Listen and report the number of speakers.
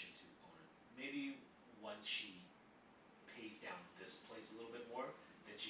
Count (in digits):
1